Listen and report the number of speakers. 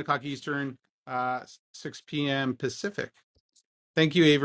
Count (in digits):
1